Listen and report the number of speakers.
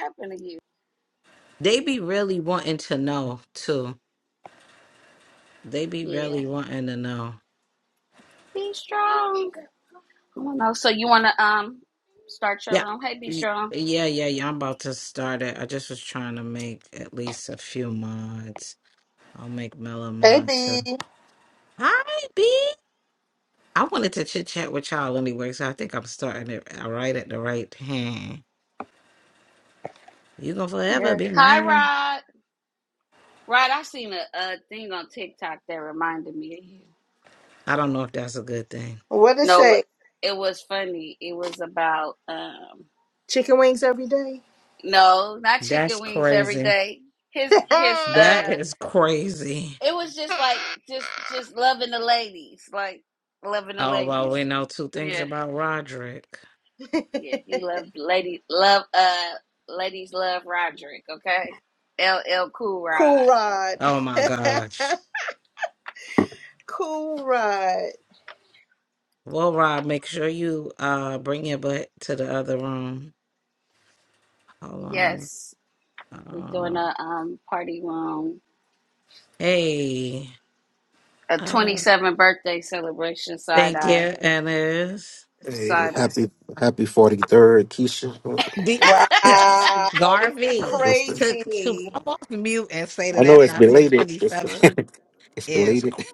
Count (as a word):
four